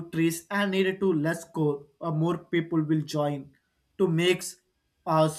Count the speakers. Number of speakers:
1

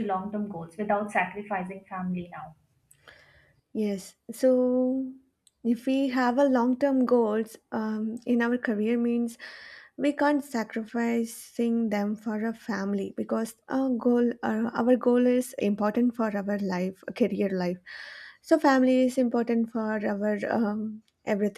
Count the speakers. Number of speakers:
2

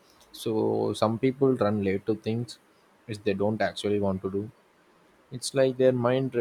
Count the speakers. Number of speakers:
1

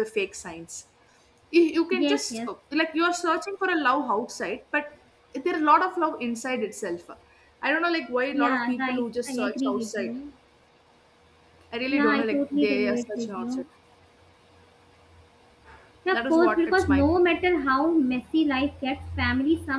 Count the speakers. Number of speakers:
2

